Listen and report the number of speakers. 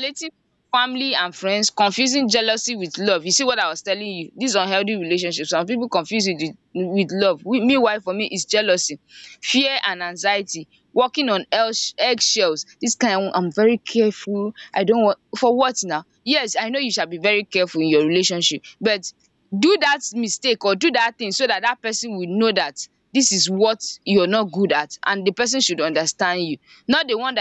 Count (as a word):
one